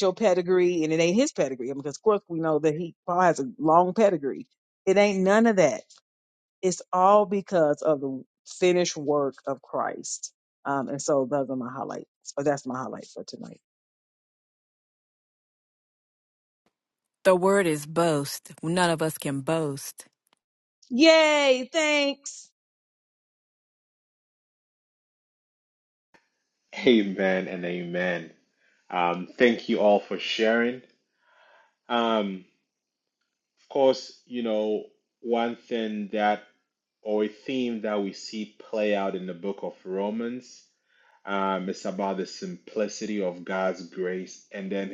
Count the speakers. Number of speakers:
three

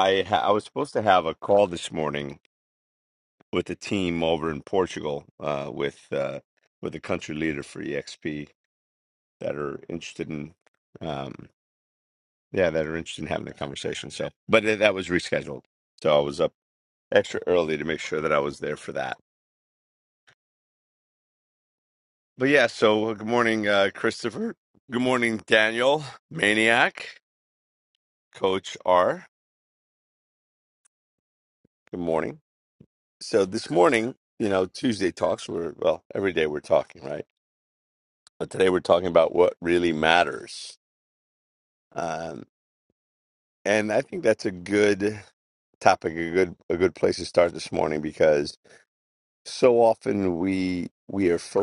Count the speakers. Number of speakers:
one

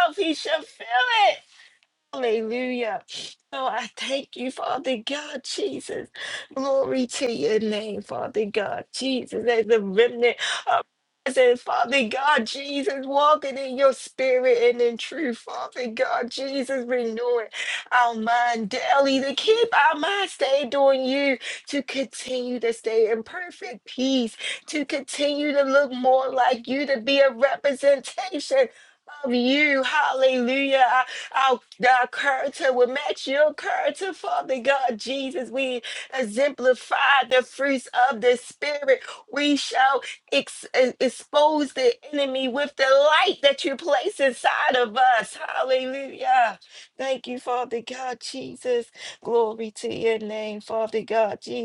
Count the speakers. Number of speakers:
one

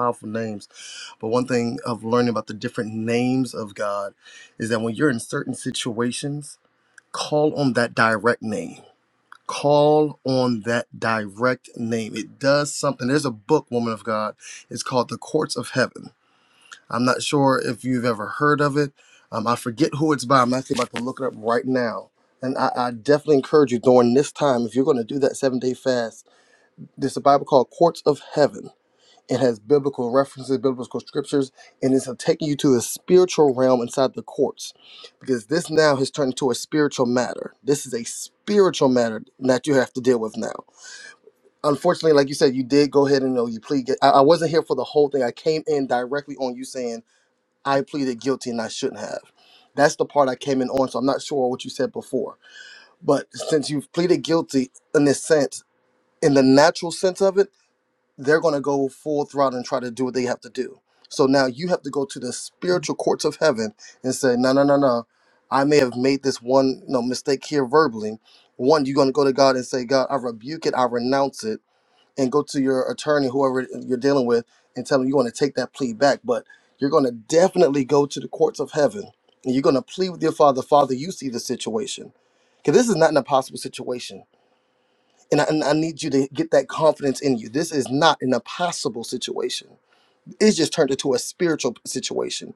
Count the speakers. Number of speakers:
one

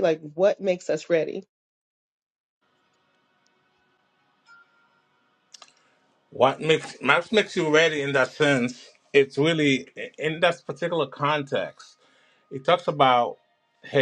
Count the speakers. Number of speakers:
two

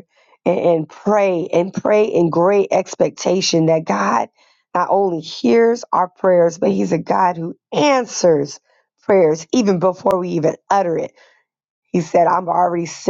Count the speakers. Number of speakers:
one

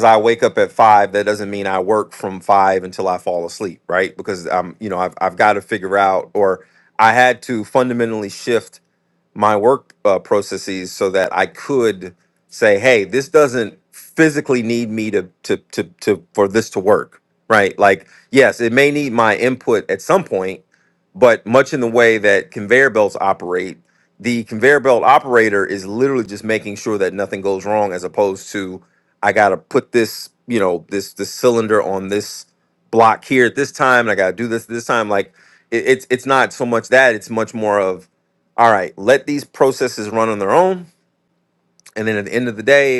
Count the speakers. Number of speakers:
one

